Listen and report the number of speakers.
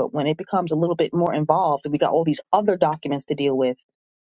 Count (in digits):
1